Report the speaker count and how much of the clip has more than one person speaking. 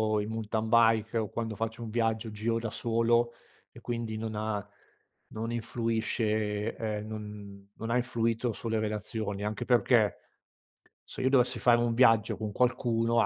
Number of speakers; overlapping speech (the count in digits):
1, no overlap